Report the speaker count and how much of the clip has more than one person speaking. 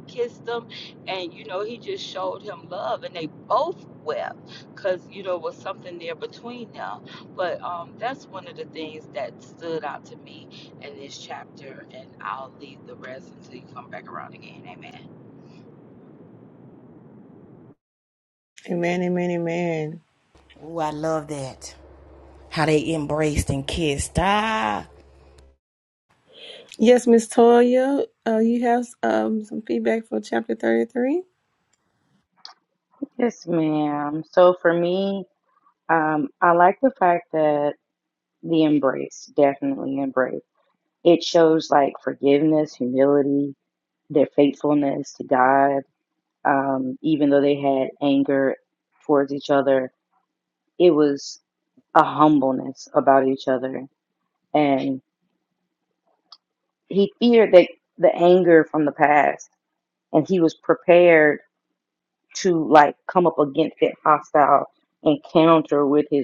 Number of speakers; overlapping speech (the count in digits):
4, no overlap